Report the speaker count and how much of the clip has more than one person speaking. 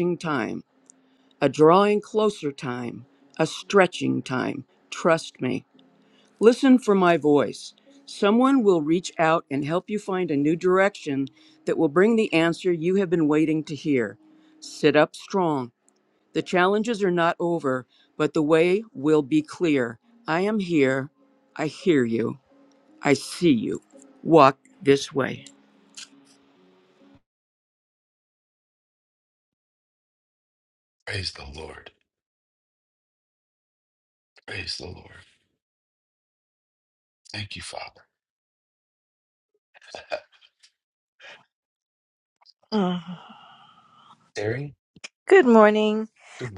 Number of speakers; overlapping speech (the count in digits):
3, no overlap